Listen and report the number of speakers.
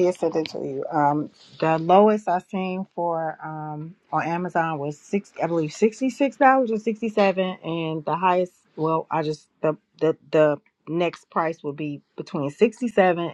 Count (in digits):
1